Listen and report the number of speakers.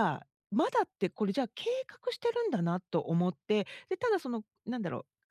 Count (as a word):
one